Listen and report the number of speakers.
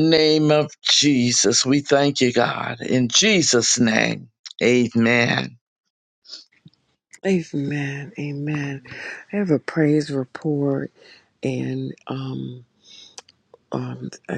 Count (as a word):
two